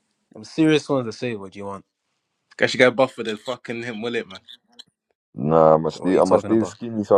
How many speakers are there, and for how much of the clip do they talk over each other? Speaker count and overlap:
3, about 11%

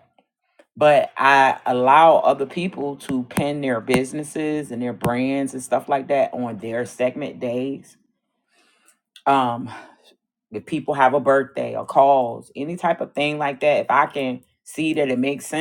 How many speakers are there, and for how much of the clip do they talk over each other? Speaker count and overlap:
1, no overlap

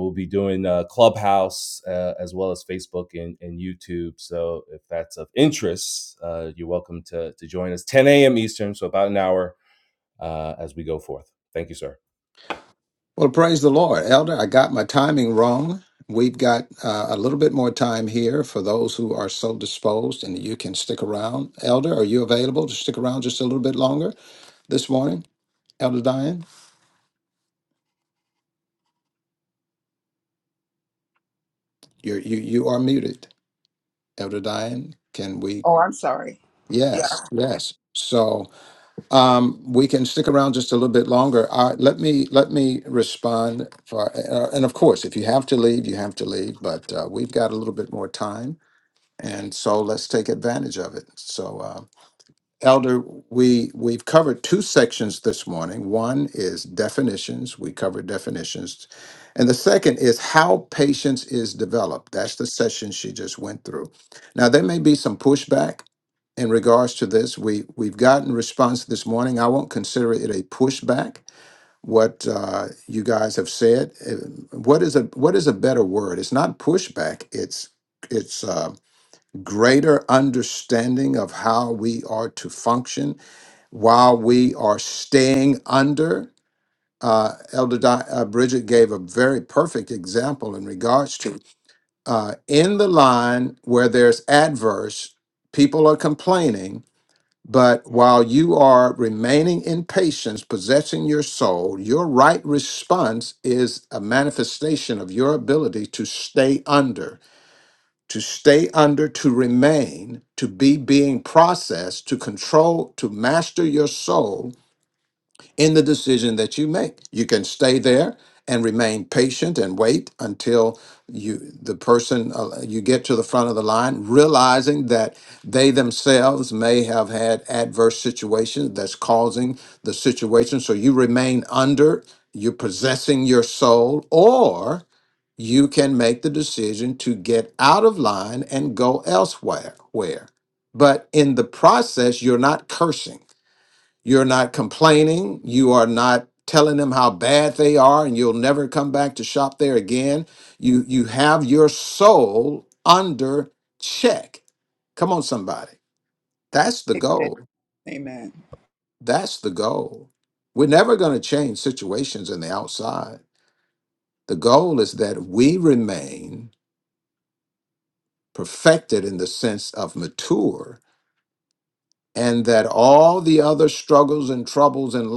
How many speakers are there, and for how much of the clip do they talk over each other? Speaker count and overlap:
3, under 1%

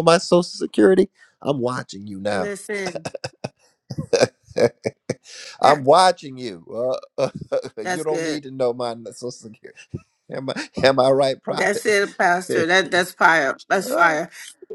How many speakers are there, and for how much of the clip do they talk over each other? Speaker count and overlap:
2, about 8%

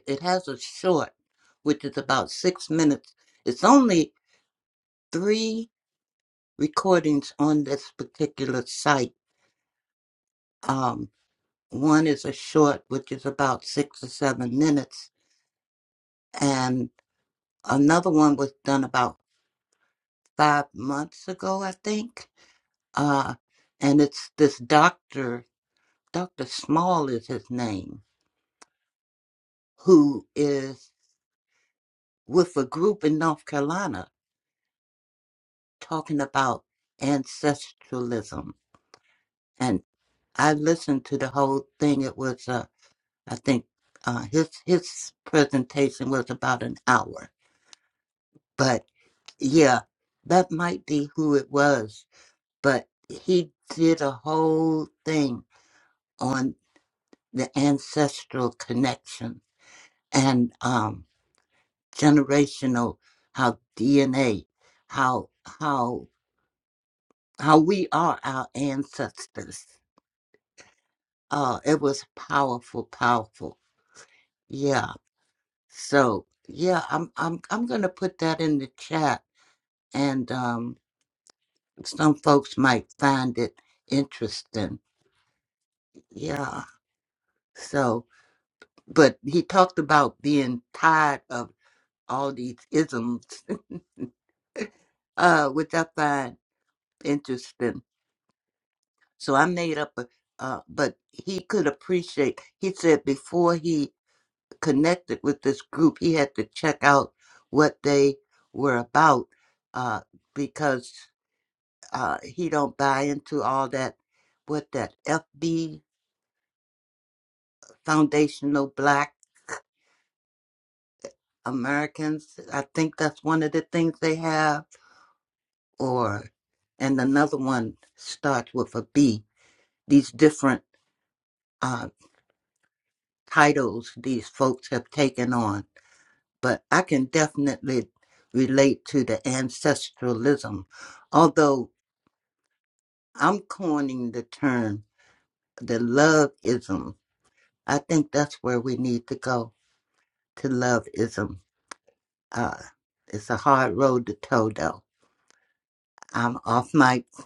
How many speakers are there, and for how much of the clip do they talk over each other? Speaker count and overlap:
1, no overlap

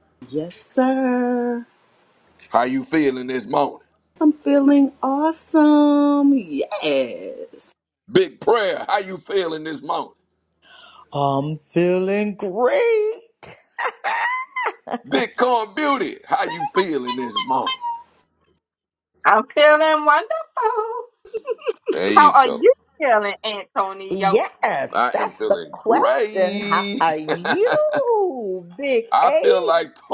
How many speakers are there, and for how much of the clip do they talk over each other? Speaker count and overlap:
4, about 11%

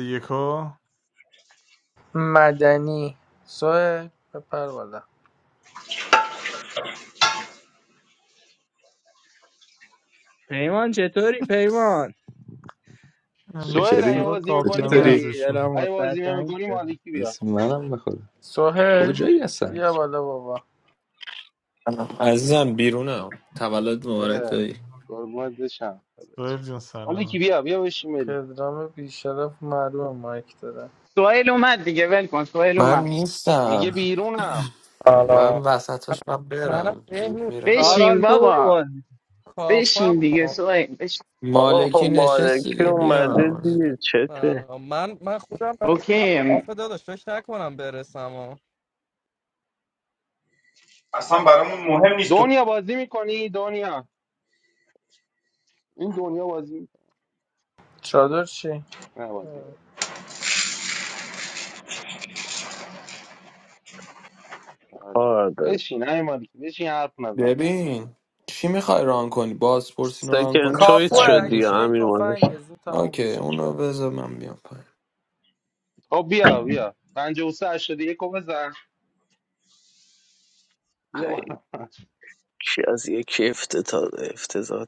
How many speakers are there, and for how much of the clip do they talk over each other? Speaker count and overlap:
10, about 17%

